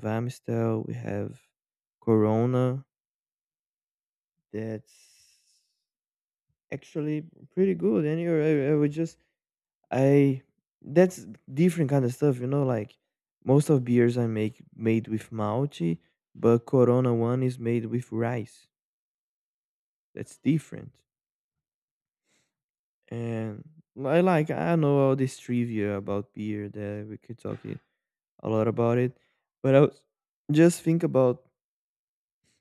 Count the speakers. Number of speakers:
1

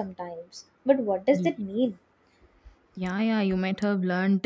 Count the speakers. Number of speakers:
2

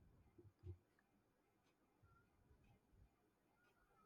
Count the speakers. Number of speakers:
0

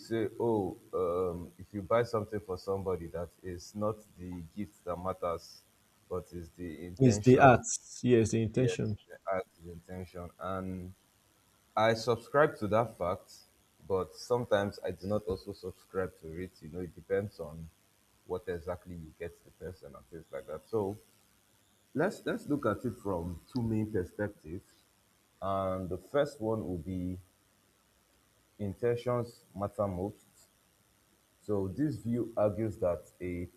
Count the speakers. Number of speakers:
2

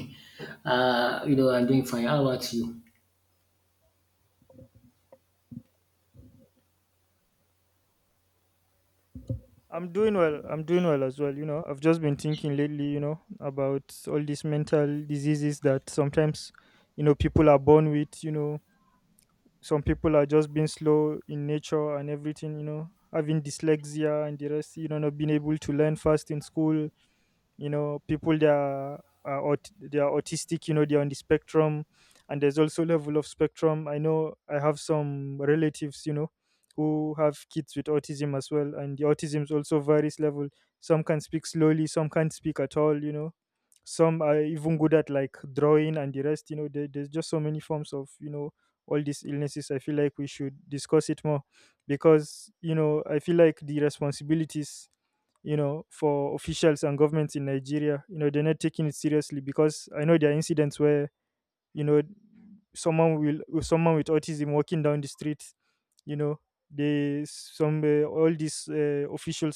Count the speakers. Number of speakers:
2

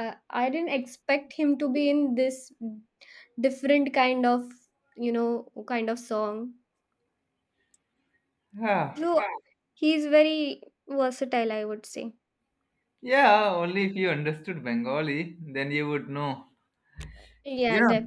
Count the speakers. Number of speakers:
2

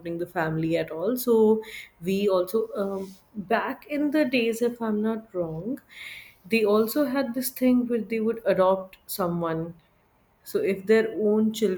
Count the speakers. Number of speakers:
1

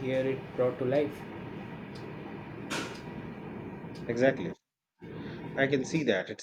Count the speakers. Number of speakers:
2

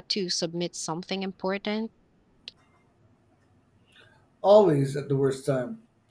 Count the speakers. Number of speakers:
2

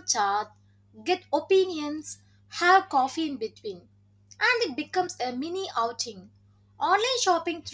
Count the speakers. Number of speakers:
1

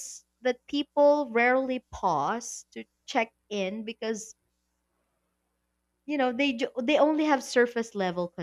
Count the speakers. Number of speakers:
1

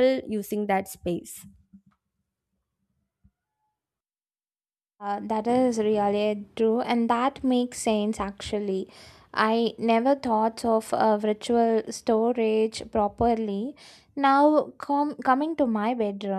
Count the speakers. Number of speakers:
2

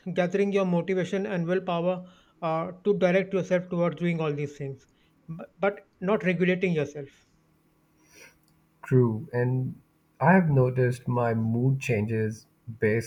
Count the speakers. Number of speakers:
2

